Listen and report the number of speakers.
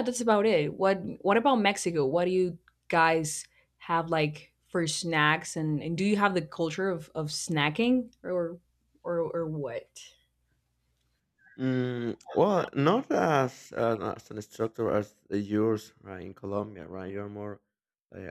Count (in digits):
2